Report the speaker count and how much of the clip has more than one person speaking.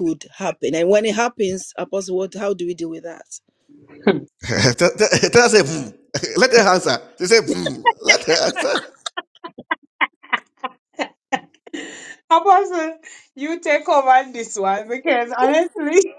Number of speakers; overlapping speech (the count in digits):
3, no overlap